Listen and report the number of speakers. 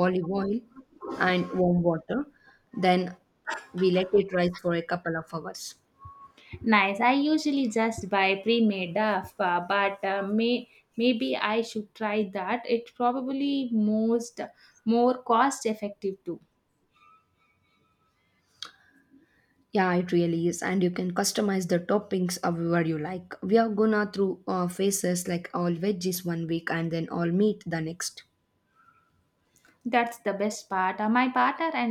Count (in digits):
2